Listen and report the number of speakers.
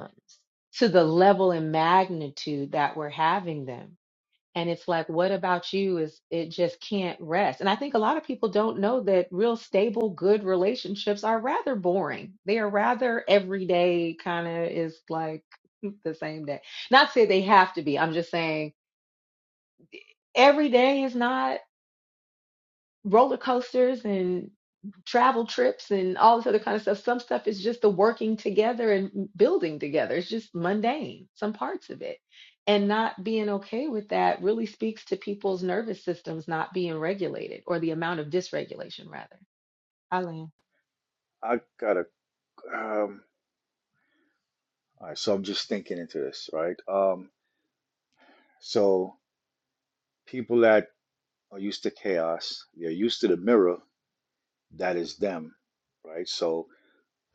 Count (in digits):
2